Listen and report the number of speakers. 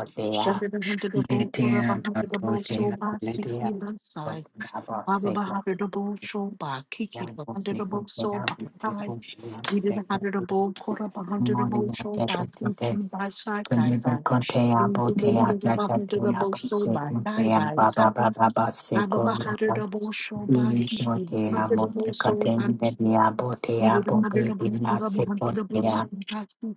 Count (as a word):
two